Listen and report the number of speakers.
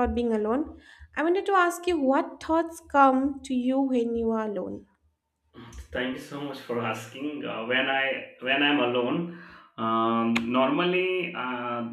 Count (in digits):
2